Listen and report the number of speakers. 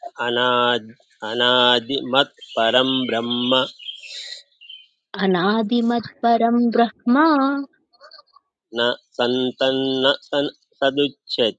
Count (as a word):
two